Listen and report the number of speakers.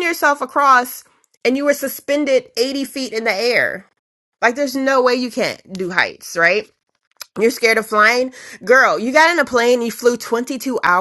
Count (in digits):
1